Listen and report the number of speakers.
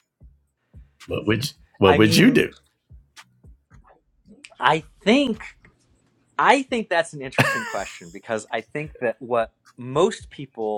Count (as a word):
two